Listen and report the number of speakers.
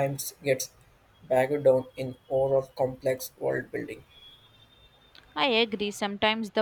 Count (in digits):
2